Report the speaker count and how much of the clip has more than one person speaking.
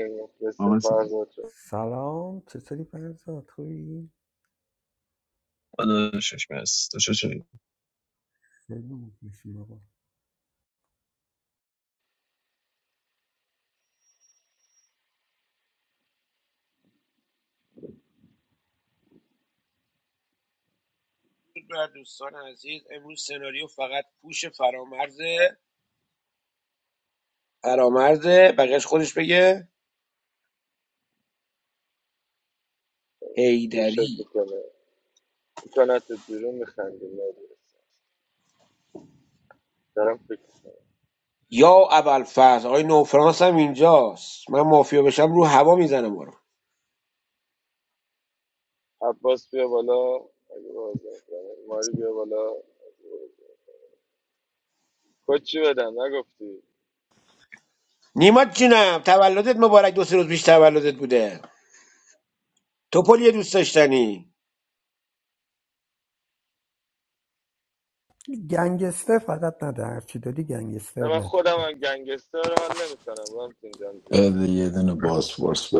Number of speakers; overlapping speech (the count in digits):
5, about 2%